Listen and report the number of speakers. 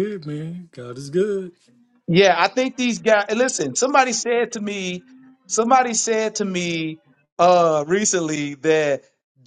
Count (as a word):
two